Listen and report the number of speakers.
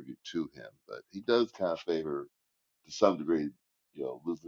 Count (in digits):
1